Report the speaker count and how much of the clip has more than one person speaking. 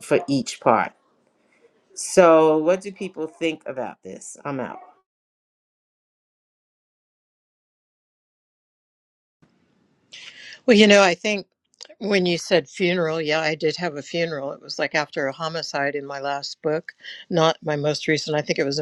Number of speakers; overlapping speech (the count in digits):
2, no overlap